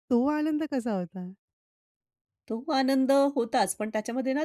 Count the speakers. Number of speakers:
2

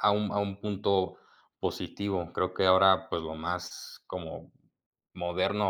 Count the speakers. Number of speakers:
1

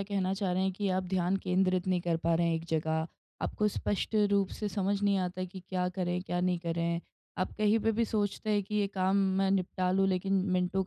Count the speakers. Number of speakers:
1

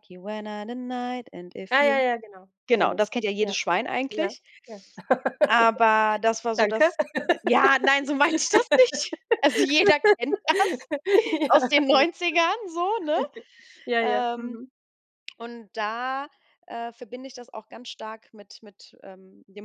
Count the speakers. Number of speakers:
2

